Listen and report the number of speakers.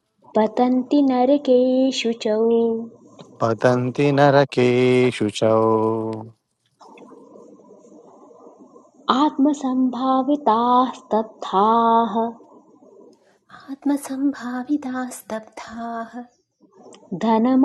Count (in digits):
3